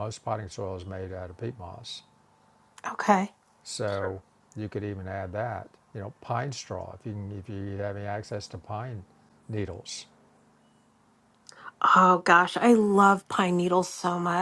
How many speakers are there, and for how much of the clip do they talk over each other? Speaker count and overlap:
2, no overlap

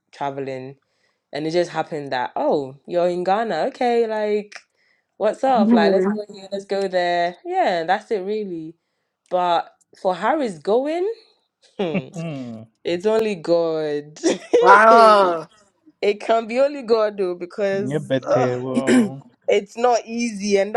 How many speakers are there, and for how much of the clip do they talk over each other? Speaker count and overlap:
3, about 7%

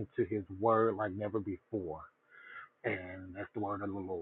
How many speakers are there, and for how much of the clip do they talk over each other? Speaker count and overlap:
1, no overlap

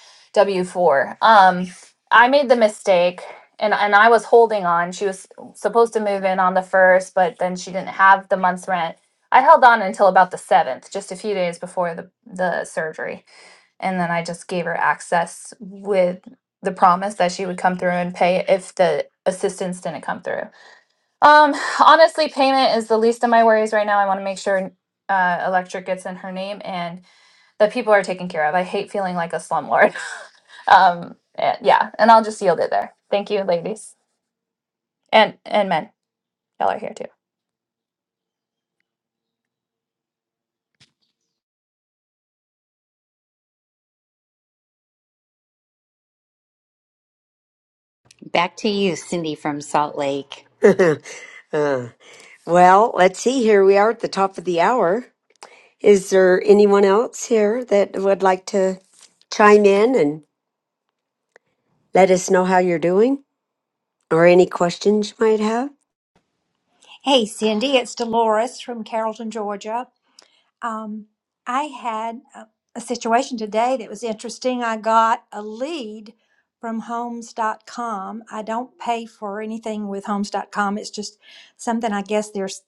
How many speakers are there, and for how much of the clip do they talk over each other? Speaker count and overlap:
4, no overlap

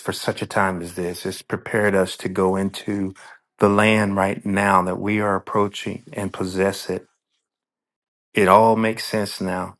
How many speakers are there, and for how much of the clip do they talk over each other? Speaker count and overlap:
1, no overlap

